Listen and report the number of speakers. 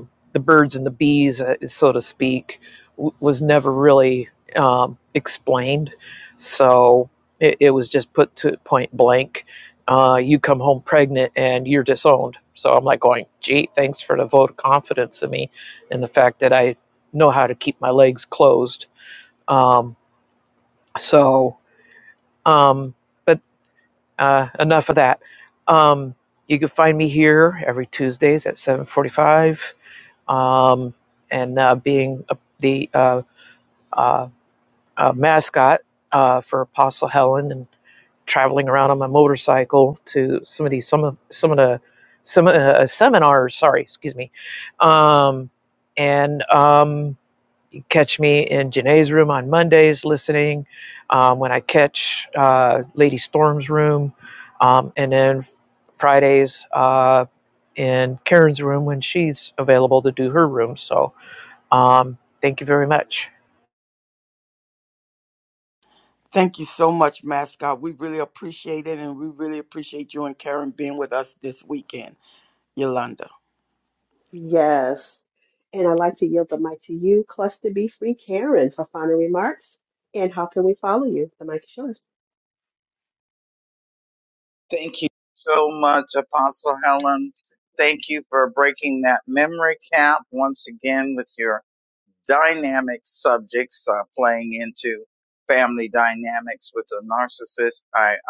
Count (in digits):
4